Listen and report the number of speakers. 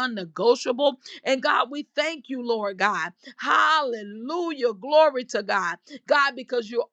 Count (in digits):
1